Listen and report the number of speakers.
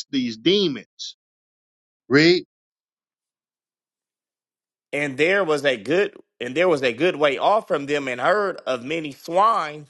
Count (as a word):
two